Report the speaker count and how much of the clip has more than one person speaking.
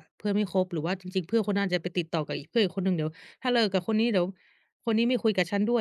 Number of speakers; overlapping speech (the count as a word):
one, no overlap